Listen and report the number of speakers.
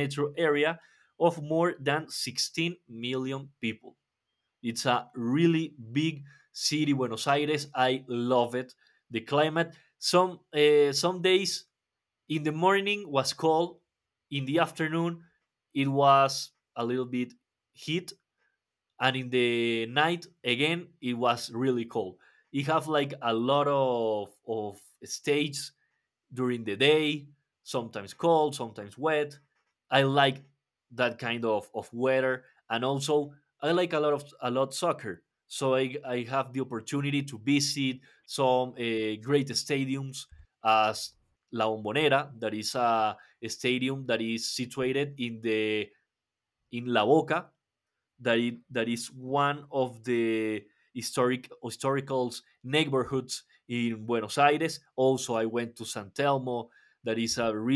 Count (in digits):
1